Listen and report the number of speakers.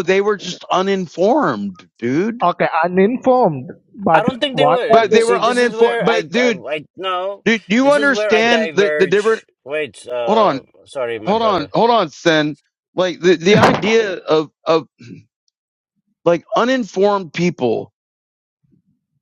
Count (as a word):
three